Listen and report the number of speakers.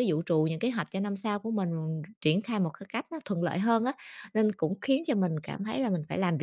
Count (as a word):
one